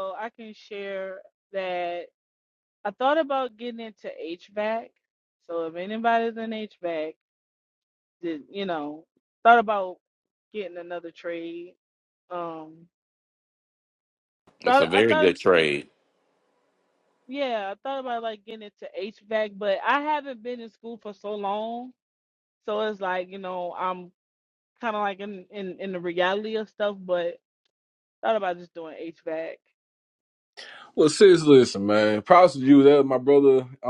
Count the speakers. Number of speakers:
three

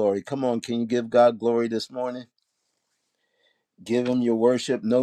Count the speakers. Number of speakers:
one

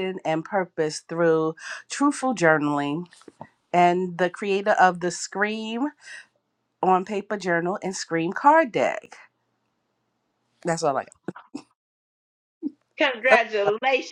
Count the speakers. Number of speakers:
two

